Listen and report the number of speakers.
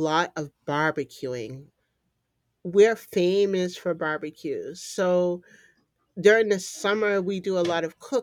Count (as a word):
one